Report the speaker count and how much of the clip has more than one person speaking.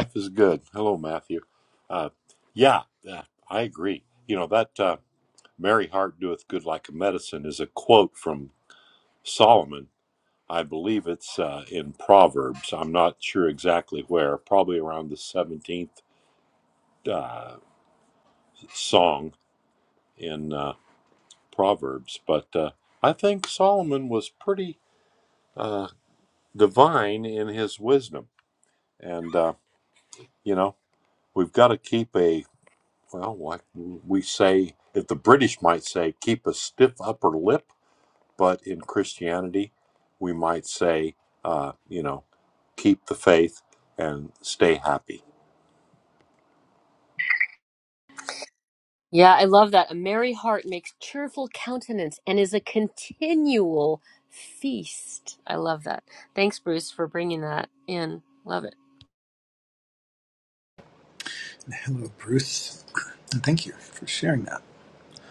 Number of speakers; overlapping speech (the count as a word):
three, no overlap